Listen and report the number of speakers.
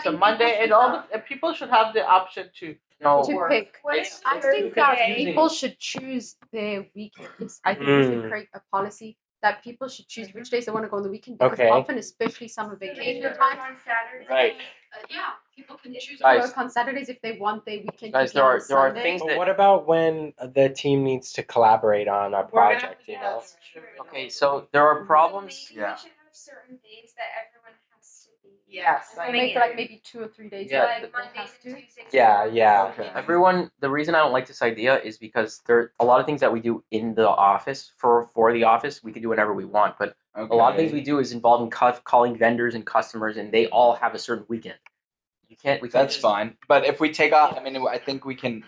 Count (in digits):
6